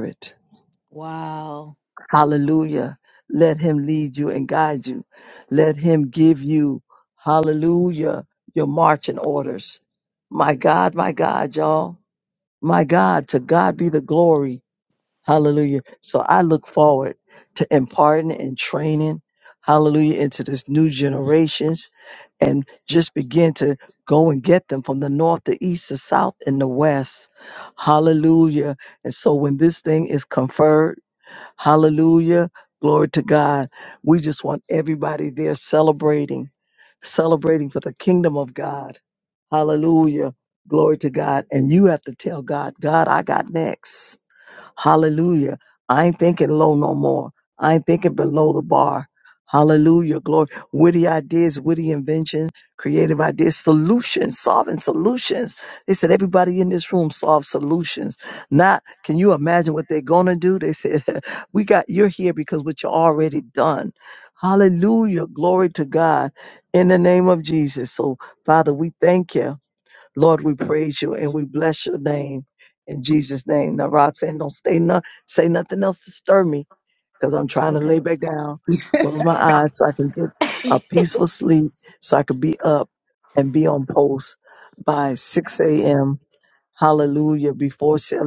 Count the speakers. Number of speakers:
two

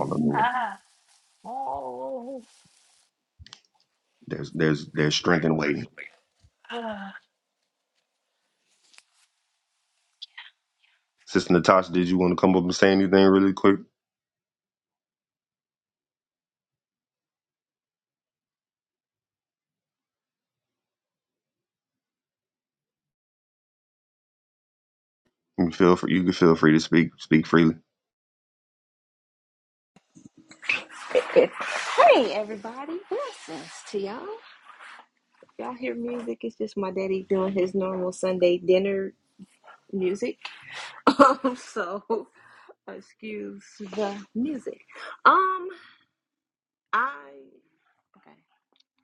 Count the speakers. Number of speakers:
three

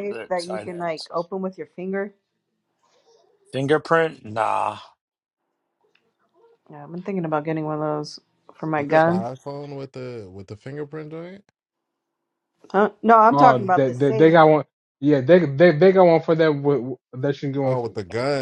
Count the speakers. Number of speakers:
four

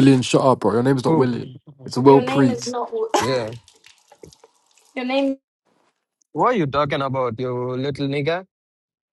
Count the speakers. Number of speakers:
three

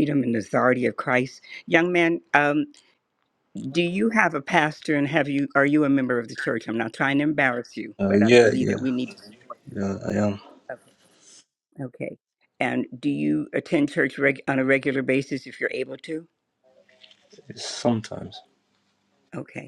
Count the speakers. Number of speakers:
two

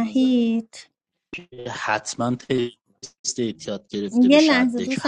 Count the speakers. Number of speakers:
two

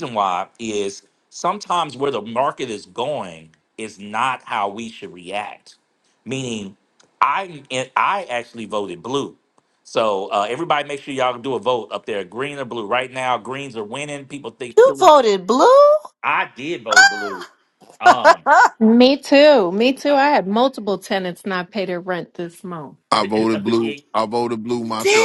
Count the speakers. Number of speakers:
four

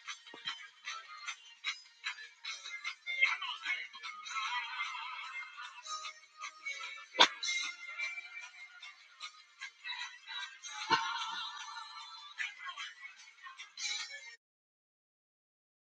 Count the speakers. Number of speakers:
zero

